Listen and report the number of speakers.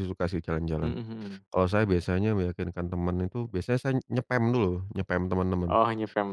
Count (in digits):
2